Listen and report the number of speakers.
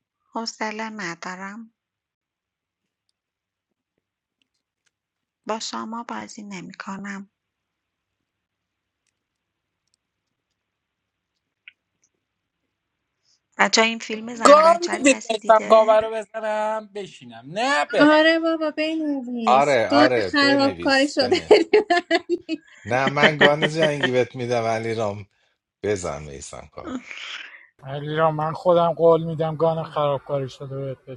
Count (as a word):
five